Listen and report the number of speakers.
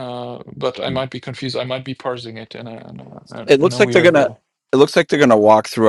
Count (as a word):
two